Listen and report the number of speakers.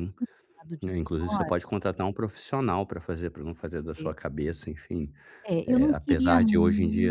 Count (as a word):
two